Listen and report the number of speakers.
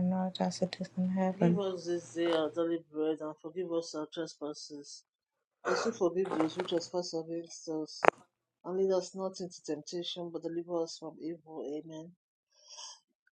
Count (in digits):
2